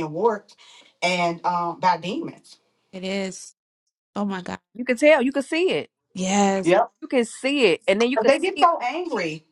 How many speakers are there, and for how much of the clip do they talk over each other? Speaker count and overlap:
3, about 5%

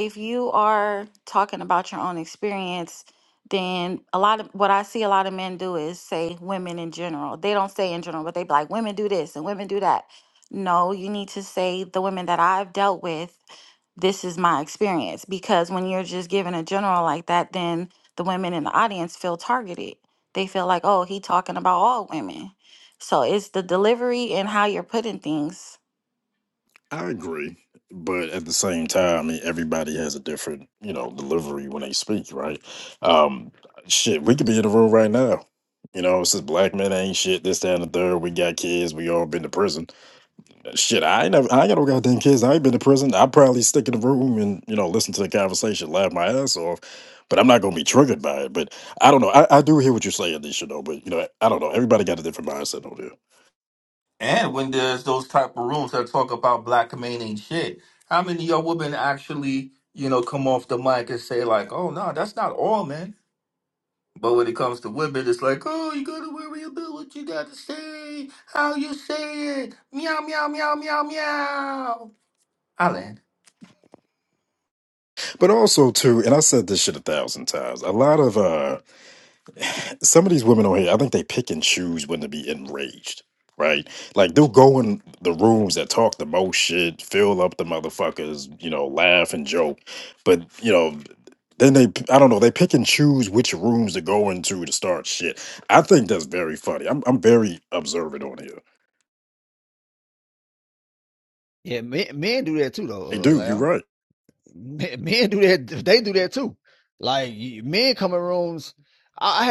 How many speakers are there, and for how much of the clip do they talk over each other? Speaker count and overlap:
4, under 1%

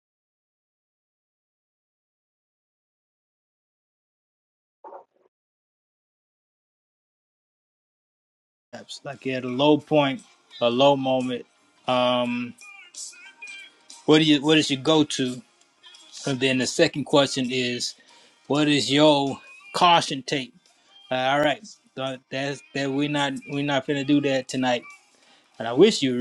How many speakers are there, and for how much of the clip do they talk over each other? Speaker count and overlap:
1, no overlap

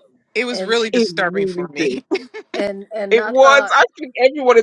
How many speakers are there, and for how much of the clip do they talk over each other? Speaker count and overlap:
3, about 41%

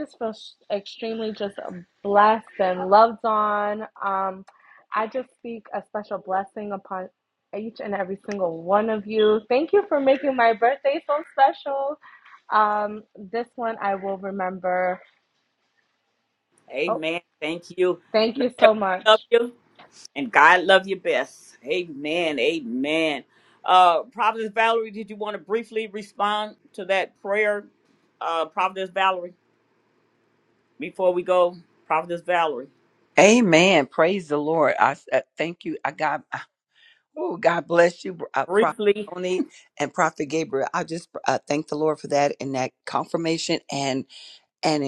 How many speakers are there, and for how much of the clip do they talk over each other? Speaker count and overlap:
3, about 2%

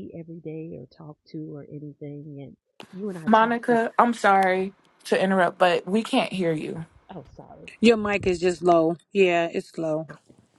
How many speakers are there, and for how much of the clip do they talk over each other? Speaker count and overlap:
3, about 5%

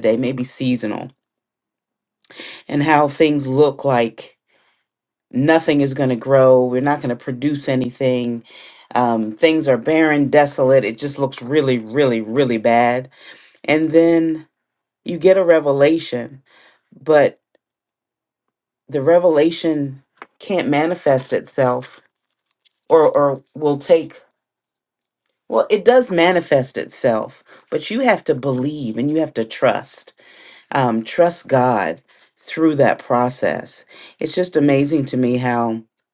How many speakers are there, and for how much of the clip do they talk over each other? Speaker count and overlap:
1, no overlap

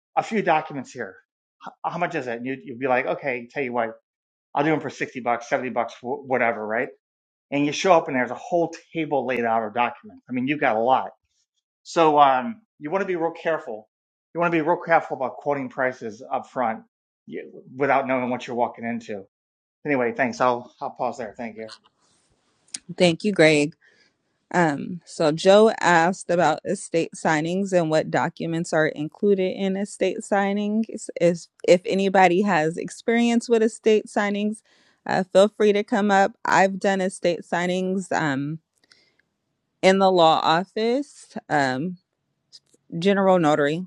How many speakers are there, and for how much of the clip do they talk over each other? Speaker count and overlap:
2, no overlap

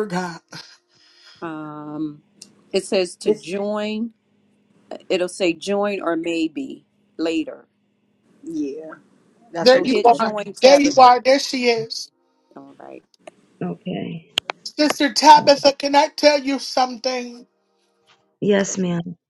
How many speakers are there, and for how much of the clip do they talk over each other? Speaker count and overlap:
4, about 8%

